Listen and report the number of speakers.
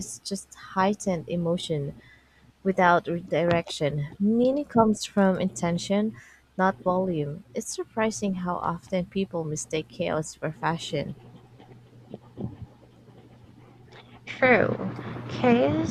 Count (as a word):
two